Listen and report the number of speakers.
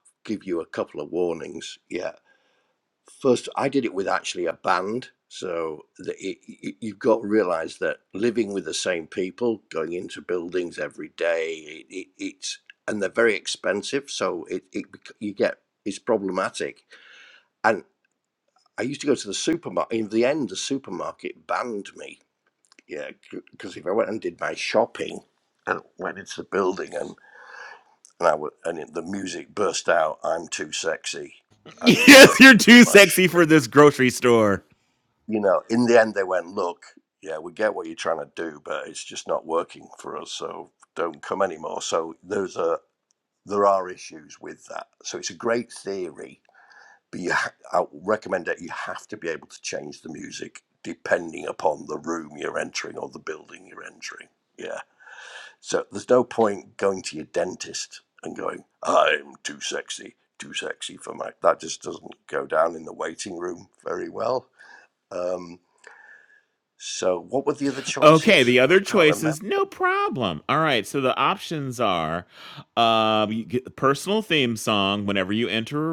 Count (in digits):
2